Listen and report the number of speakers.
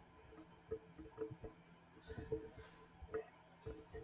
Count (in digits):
0